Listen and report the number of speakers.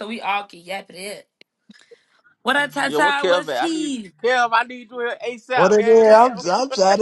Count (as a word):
three